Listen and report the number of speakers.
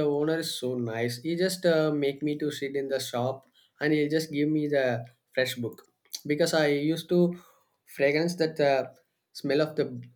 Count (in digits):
1